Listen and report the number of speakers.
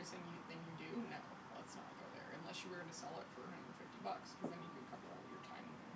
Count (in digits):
1